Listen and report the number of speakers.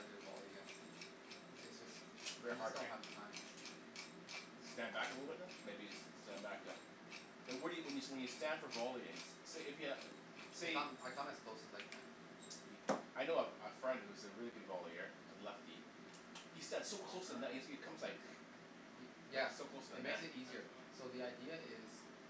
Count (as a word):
two